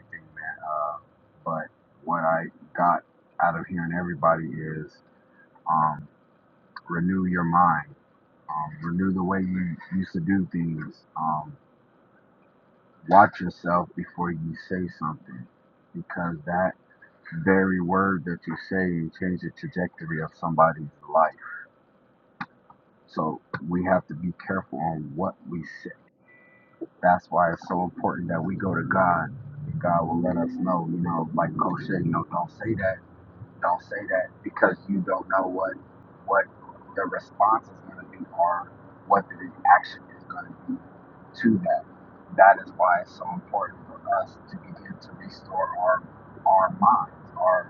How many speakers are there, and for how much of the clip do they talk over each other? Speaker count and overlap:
1, no overlap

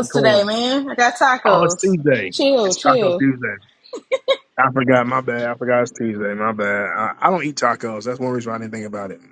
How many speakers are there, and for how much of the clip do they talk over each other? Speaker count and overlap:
2, about 14%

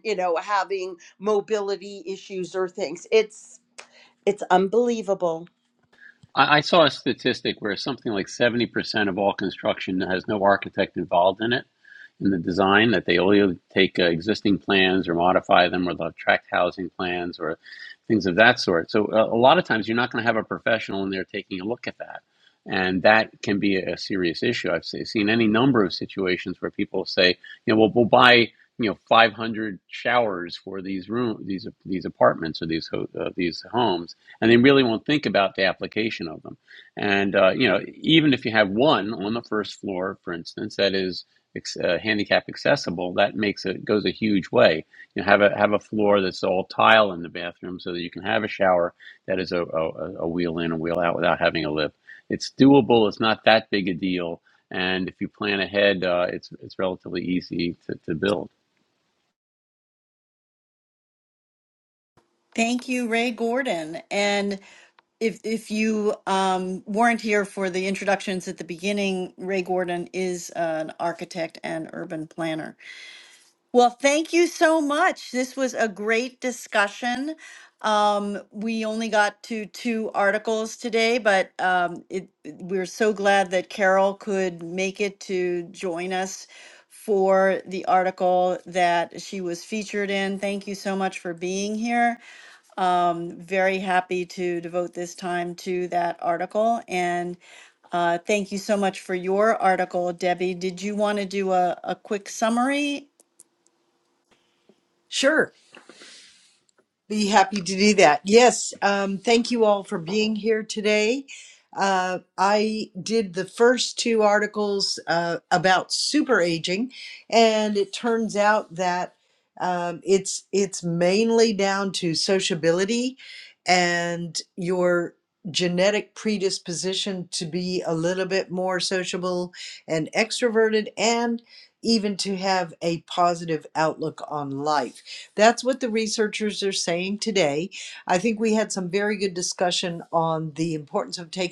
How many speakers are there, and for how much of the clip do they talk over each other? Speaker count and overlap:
4, no overlap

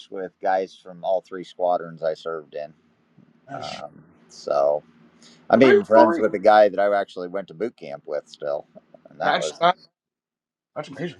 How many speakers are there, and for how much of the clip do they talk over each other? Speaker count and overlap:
2, about 11%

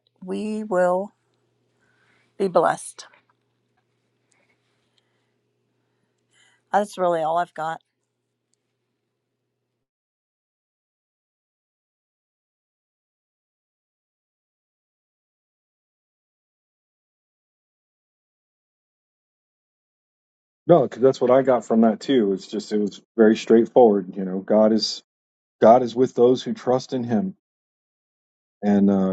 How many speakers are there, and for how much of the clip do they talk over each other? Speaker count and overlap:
2, no overlap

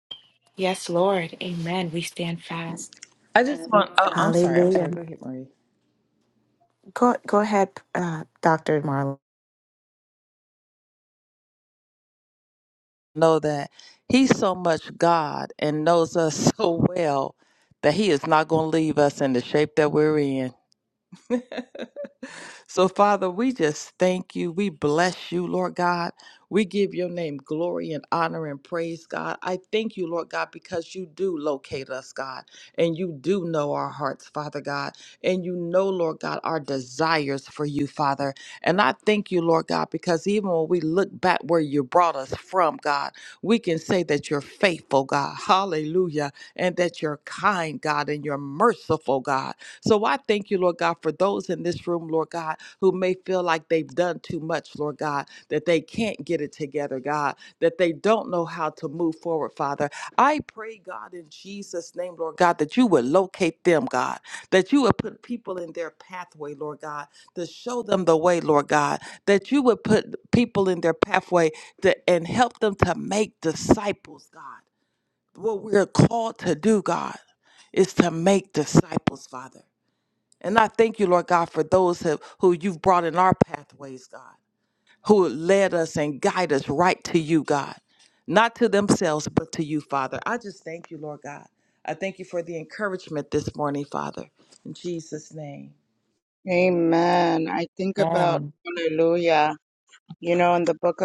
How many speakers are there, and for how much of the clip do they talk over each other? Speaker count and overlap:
3, about 1%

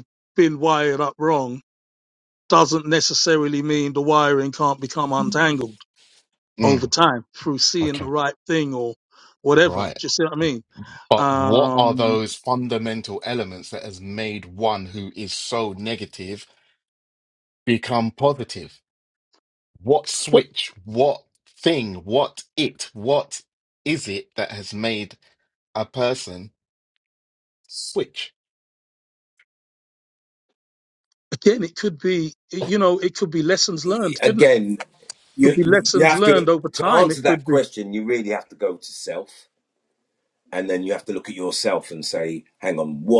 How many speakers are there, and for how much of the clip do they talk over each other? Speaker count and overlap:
3, about 10%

